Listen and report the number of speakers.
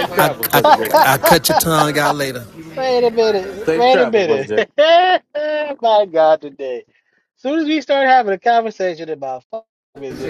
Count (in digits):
3